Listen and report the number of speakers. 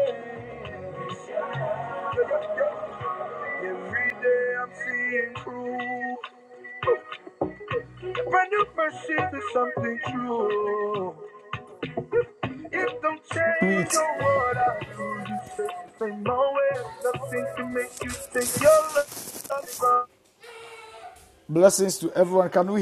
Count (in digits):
2